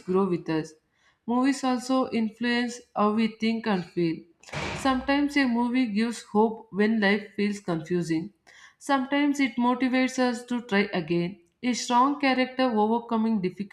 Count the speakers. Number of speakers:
1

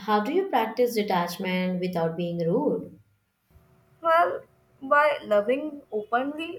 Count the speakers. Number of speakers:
2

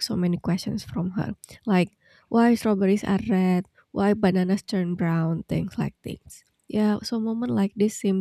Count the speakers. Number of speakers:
1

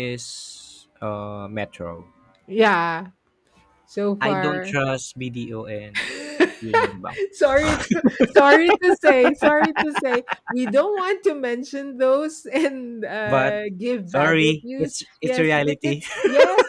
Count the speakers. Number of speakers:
2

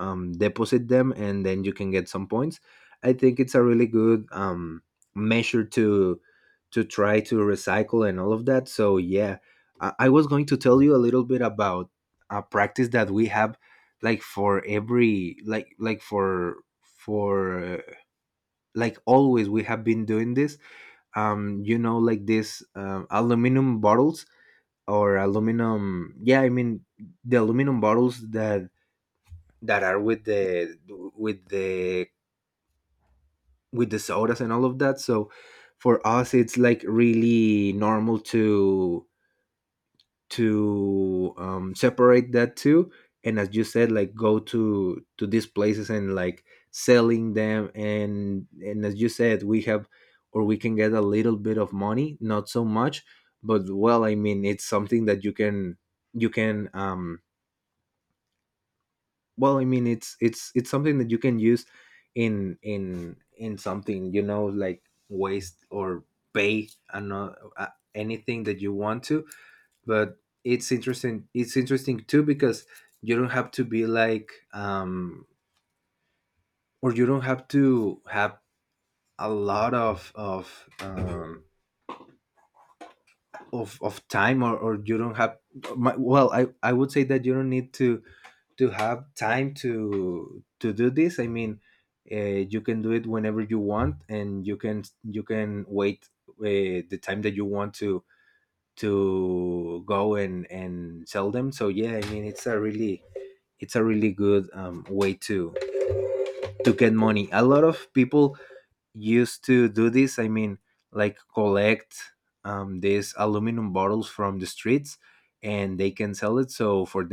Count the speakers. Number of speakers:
1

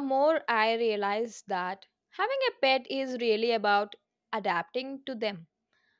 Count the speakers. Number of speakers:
1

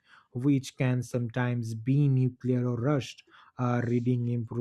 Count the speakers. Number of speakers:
1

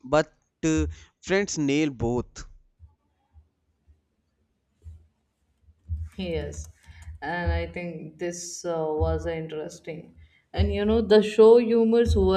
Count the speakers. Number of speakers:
2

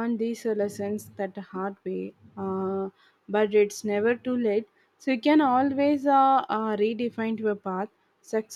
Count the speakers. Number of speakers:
1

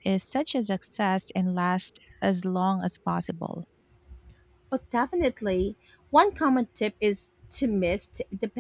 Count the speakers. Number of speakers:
2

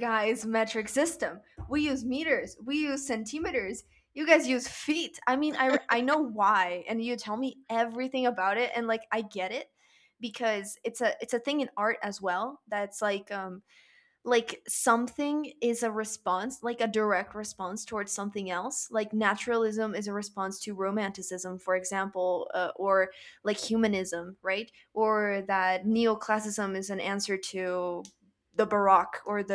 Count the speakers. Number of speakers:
1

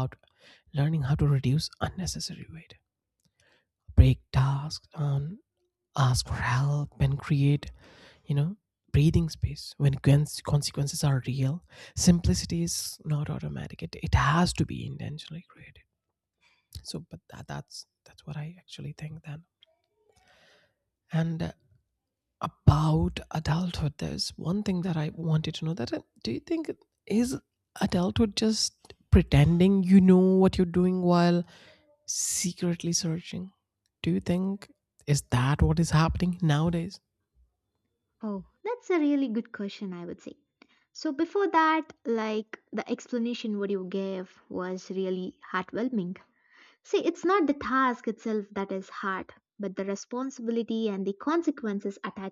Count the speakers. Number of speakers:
2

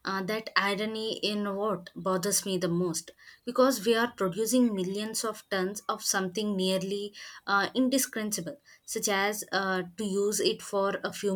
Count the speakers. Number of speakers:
1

